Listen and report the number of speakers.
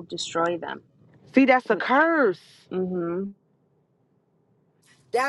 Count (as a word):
two